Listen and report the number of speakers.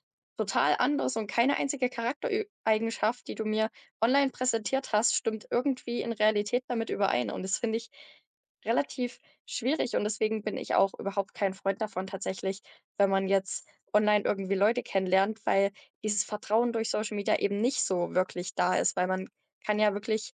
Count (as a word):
one